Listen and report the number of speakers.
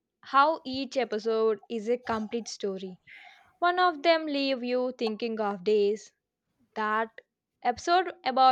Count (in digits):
1